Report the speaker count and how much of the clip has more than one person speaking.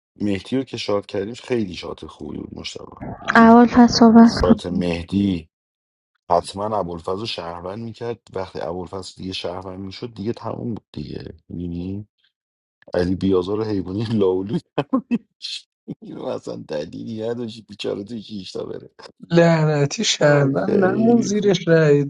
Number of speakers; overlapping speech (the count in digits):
3, about 8%